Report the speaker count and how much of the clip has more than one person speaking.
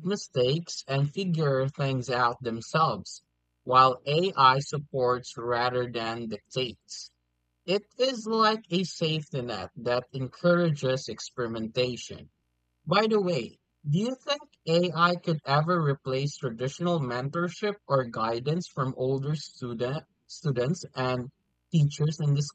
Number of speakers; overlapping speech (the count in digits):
1, no overlap